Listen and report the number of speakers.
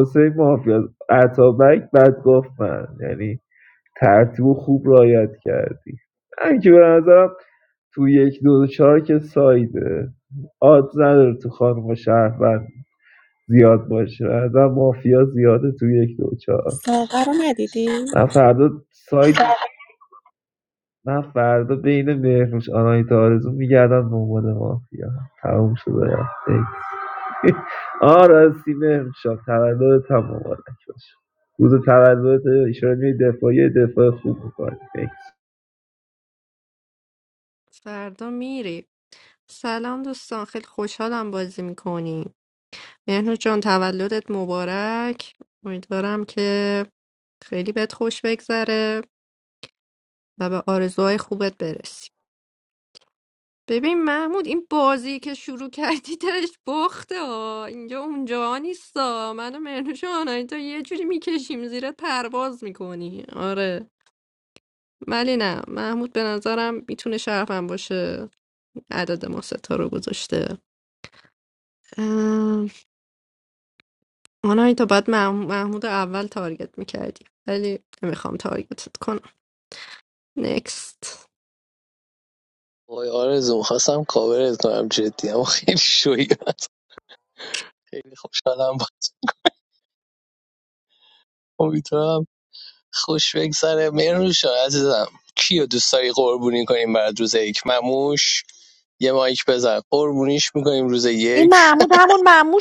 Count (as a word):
five